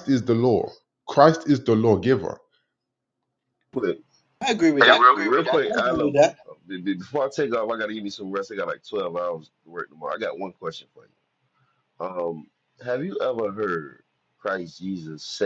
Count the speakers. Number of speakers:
three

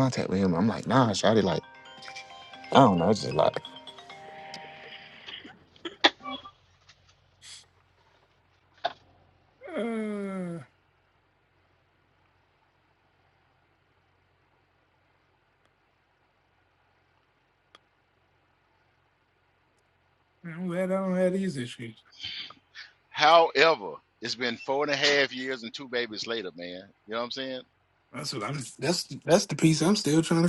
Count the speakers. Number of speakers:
three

